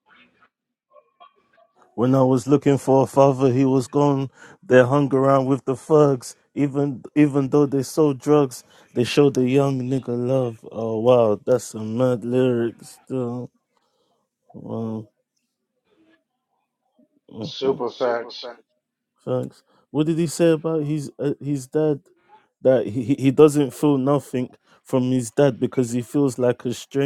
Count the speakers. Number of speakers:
2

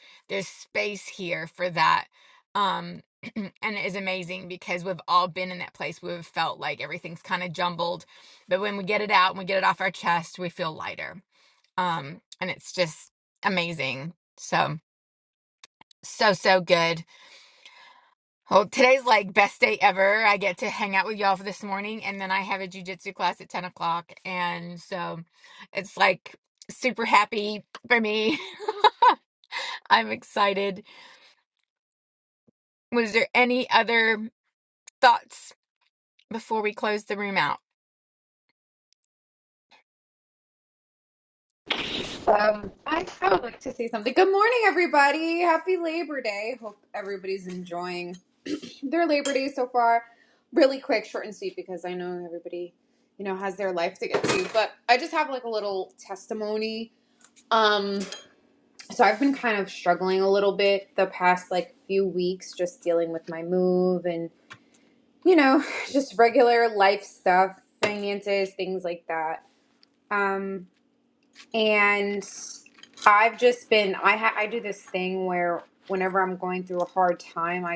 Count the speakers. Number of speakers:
2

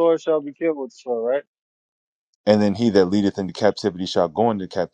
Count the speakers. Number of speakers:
2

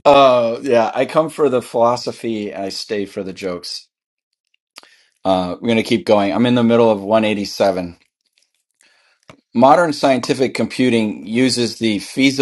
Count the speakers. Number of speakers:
1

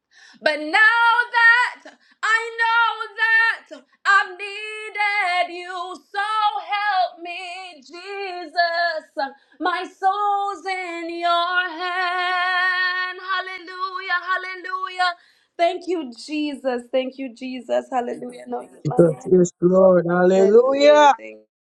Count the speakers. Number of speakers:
2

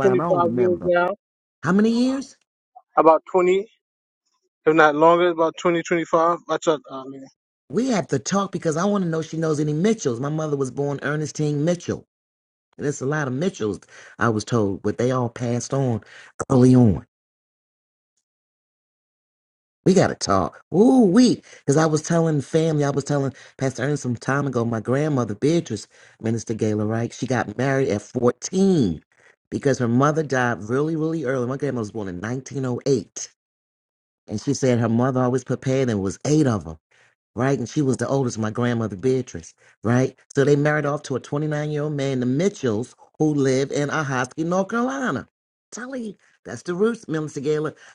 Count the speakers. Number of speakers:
2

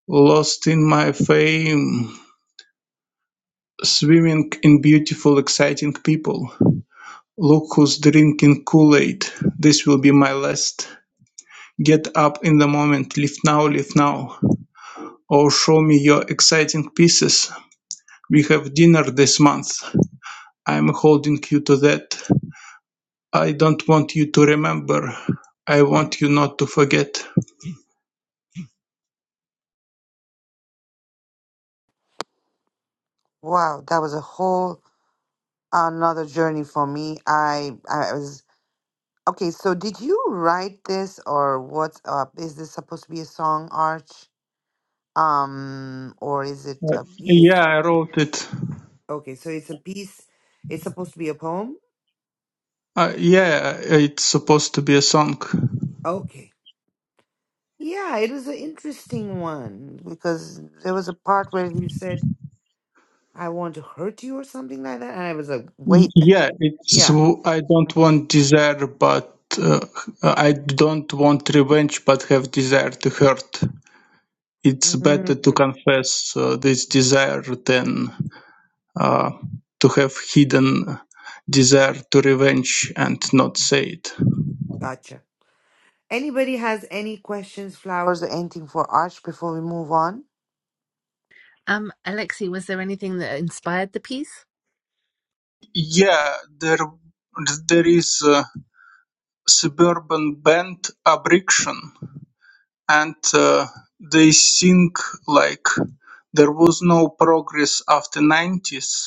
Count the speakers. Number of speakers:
3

